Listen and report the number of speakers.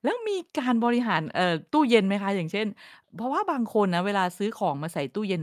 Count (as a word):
one